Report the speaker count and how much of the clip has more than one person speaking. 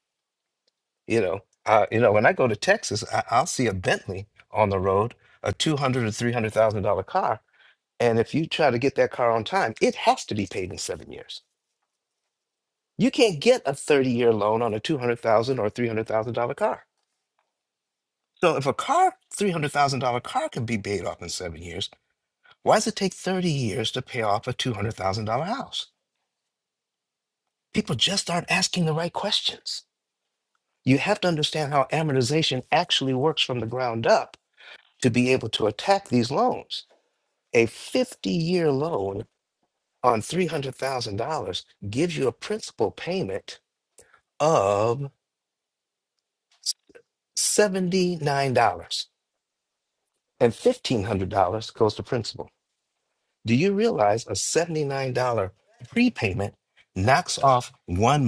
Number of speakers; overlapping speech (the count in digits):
1, no overlap